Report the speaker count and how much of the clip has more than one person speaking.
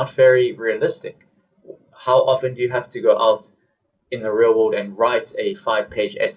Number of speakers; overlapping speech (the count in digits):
1, no overlap